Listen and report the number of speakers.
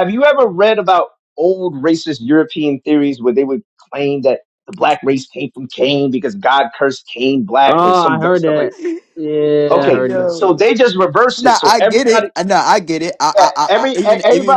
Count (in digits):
3